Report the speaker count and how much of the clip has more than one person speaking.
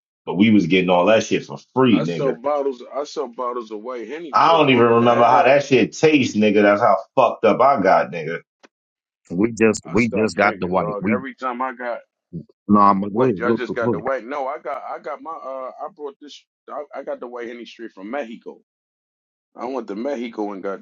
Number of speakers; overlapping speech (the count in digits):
3, about 20%